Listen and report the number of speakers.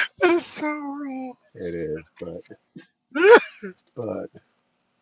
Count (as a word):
two